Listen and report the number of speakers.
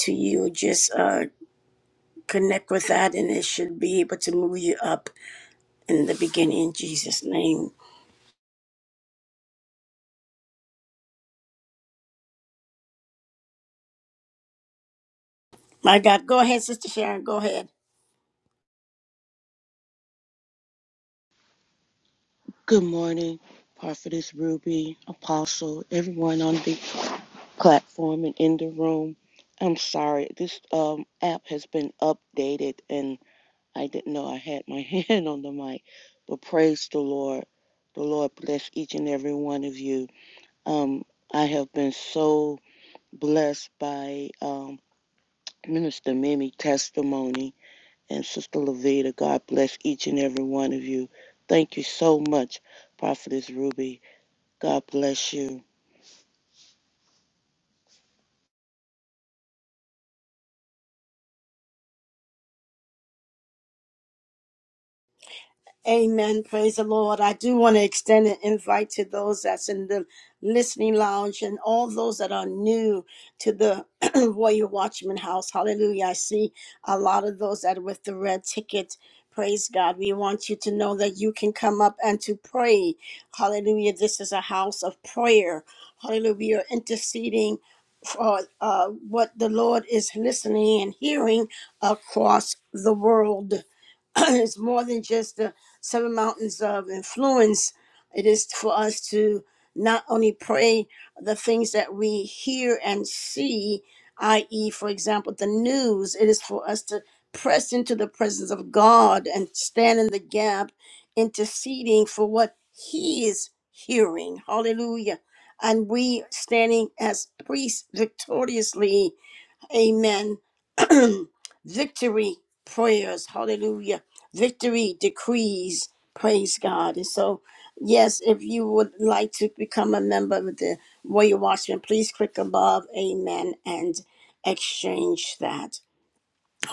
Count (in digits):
2